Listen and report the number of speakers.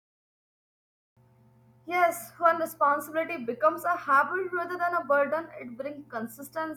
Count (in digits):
1